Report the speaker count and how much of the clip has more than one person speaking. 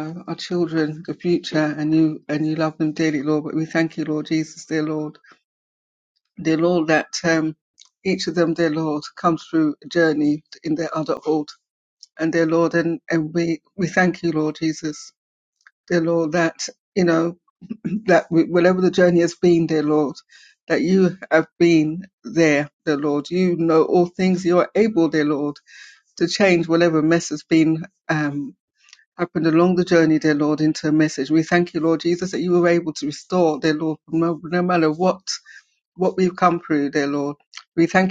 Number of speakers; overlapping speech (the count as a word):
one, no overlap